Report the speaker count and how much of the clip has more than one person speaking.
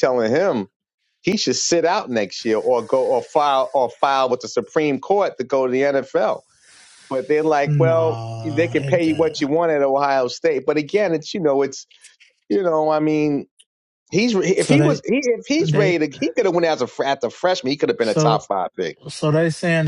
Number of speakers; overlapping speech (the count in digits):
2, about 15%